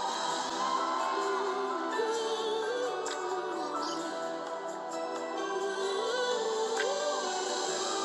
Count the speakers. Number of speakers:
0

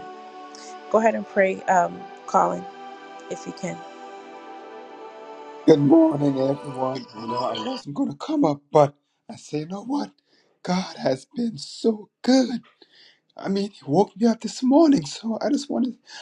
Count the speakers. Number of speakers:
2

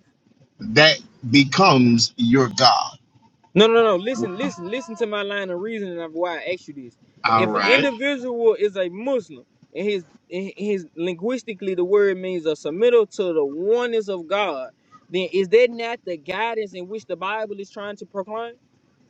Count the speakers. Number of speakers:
2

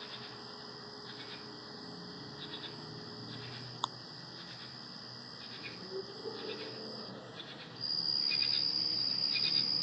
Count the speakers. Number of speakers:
0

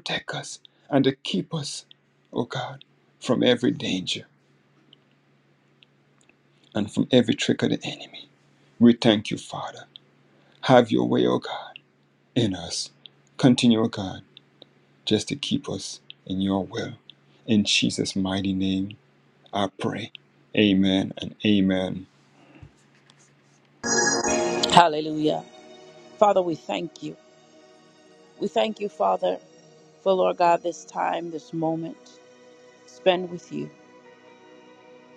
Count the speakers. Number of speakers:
2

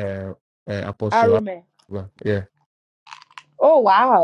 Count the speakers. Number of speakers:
2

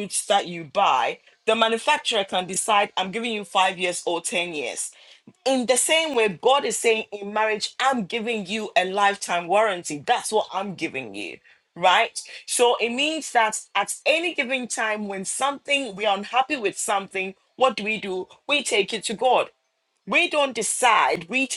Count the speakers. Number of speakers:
1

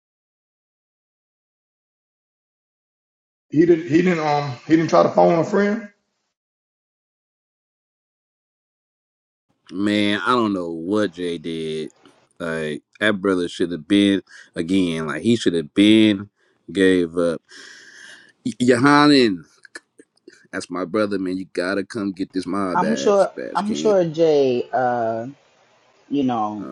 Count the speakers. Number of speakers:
3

